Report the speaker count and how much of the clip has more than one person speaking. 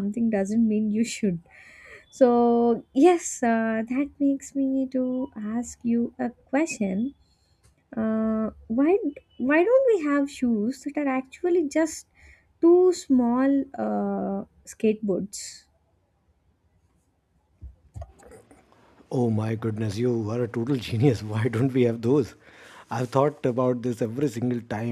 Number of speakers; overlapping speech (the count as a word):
two, no overlap